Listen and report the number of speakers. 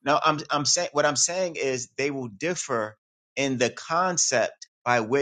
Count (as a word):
one